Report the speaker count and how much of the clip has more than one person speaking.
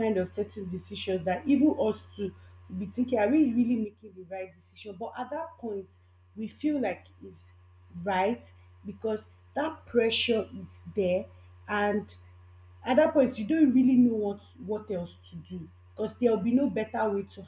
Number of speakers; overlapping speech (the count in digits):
1, no overlap